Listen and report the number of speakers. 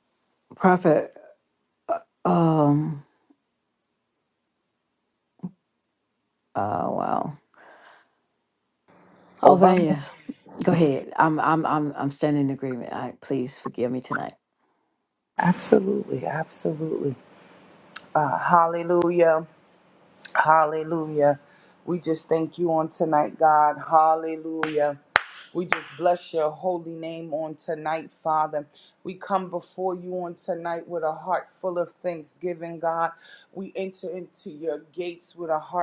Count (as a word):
two